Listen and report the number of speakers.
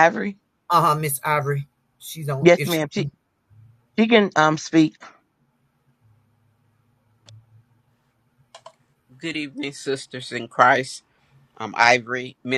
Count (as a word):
three